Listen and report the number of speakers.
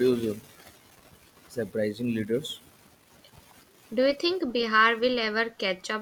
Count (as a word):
two